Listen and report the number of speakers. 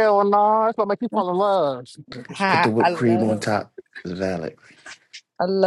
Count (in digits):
3